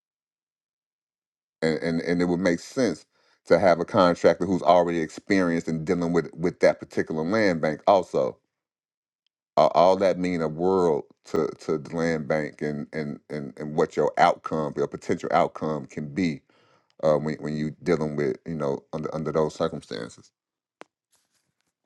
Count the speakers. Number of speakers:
one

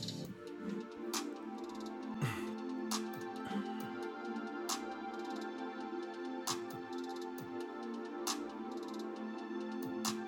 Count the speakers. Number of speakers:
zero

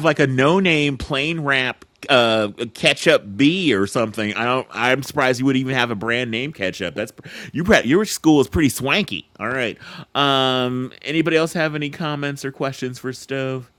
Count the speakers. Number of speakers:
one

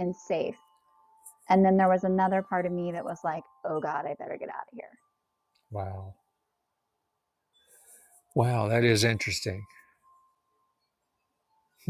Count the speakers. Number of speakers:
two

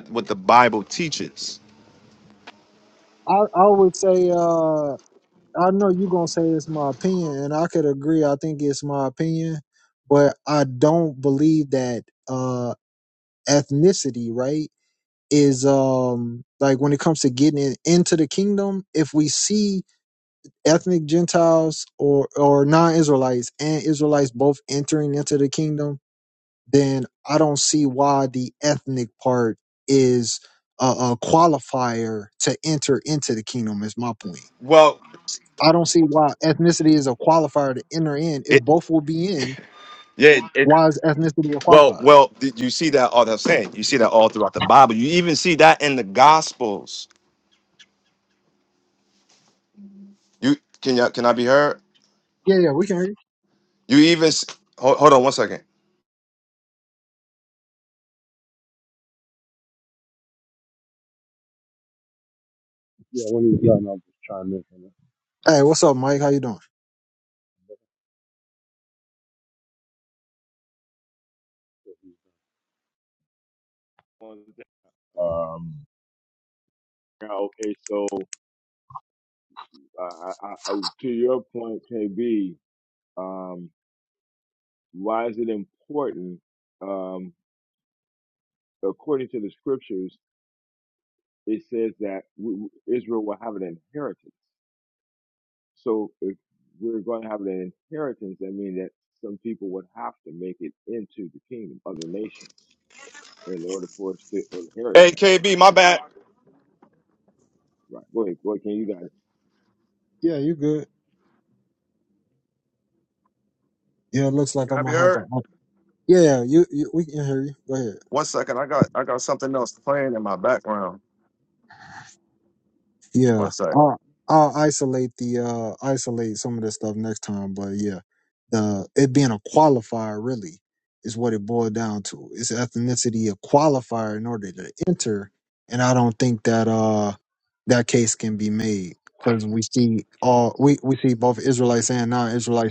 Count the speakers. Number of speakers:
four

